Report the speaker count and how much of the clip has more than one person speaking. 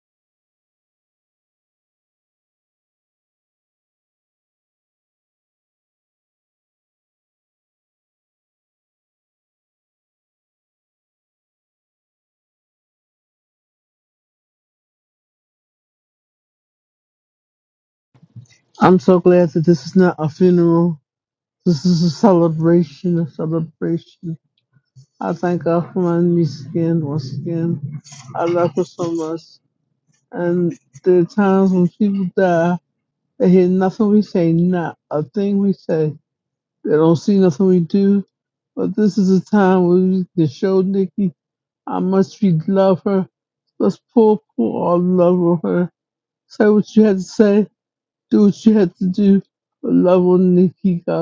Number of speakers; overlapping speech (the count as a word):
one, no overlap